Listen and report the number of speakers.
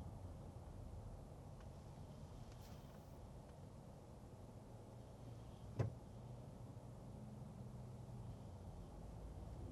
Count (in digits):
0